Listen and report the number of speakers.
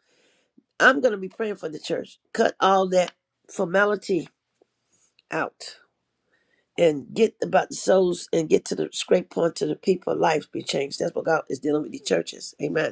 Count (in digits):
1